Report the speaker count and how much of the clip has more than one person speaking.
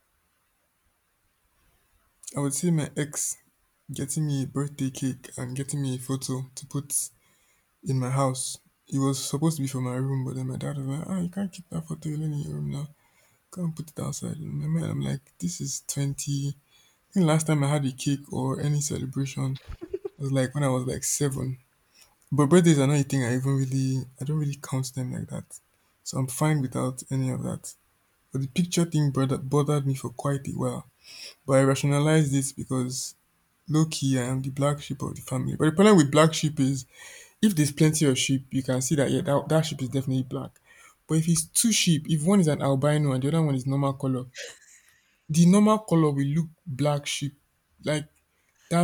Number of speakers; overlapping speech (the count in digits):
1, no overlap